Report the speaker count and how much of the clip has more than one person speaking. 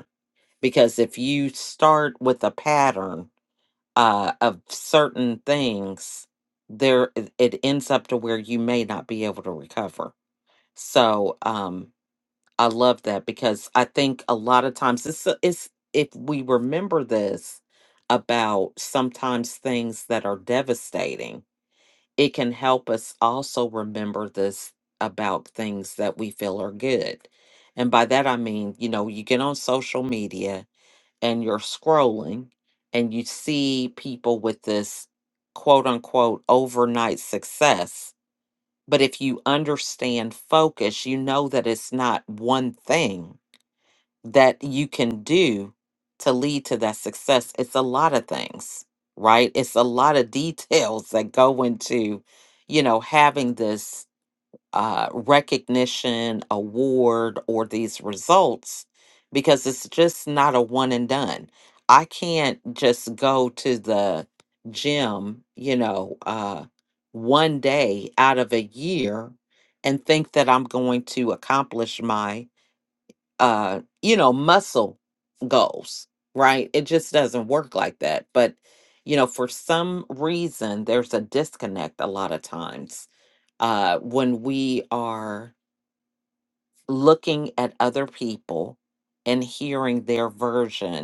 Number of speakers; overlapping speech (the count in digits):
1, no overlap